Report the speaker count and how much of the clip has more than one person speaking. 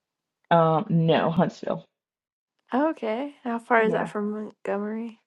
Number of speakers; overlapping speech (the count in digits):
2, about 5%